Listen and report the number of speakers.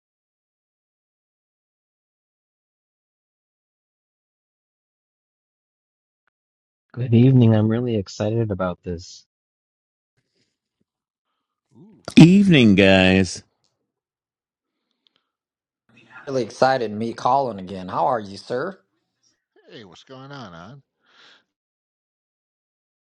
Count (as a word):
four